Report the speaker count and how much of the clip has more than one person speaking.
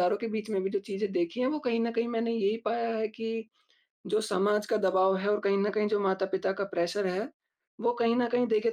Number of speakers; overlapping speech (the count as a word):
one, no overlap